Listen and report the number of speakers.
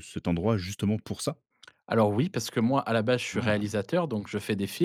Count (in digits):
2